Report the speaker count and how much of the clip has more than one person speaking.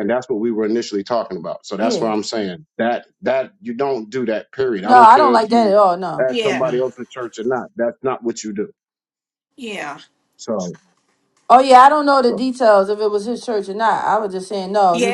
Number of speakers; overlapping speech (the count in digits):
3, about 13%